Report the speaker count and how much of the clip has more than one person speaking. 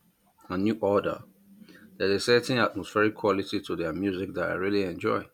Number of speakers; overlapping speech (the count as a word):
one, no overlap